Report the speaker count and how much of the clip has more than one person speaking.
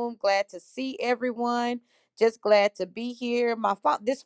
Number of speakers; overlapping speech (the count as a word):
one, no overlap